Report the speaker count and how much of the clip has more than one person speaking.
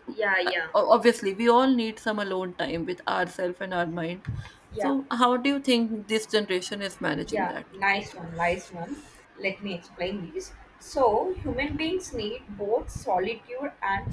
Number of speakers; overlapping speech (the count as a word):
two, about 5%